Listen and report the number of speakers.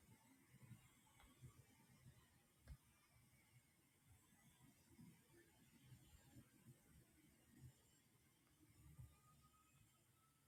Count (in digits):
0